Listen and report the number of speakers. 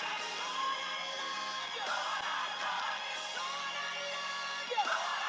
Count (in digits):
0